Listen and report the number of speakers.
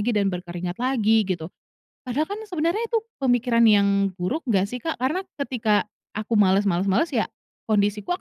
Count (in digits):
1